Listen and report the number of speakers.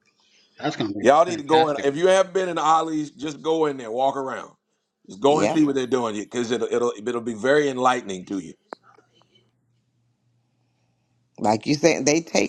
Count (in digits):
3